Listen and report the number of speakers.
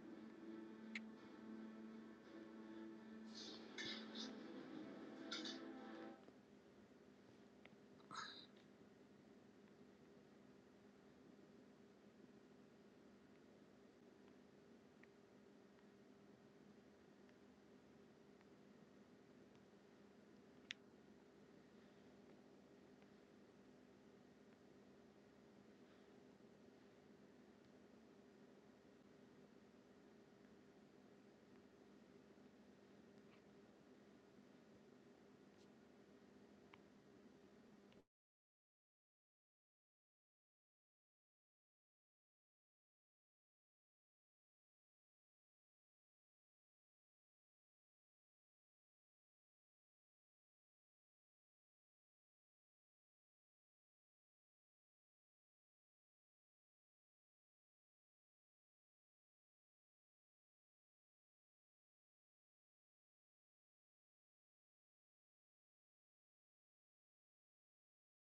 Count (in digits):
0